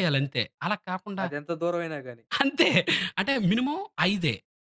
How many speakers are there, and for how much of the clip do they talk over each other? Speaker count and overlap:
two, about 8%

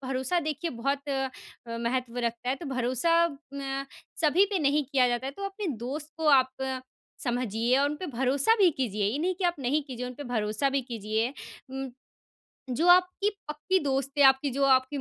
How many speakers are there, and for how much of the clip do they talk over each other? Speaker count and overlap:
one, no overlap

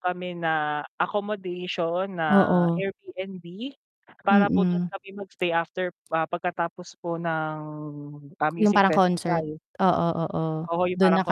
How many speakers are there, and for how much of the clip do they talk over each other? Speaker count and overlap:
two, about 18%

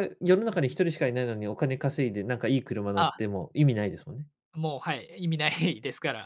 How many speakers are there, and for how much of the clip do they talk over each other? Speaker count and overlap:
two, about 4%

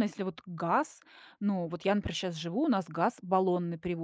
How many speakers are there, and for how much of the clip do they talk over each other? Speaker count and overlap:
one, no overlap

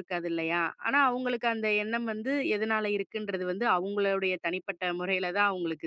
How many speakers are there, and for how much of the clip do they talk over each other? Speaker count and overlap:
one, no overlap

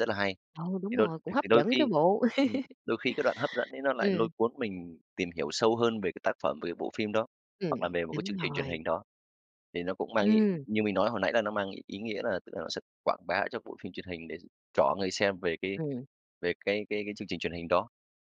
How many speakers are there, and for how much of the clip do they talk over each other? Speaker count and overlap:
two, about 15%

